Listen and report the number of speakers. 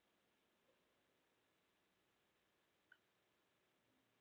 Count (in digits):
0